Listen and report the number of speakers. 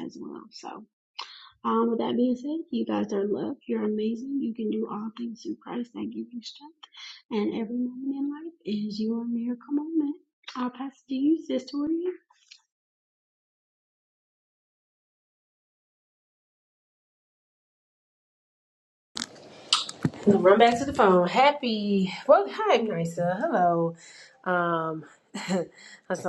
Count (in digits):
2